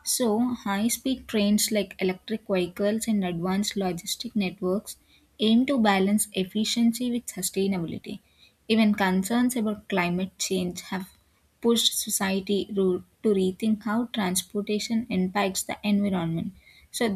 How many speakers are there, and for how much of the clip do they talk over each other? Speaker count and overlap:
one, no overlap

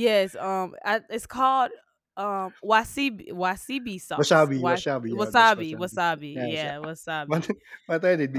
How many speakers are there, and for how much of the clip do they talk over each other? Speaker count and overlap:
two, about 30%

